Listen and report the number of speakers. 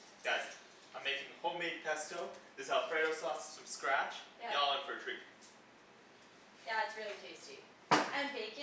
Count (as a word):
two